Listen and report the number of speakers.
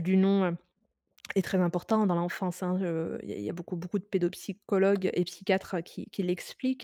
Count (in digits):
1